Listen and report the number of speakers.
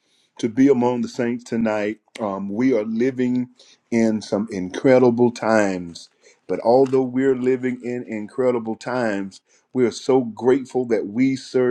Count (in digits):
1